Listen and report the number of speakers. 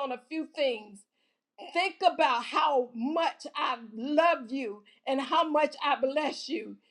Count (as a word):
one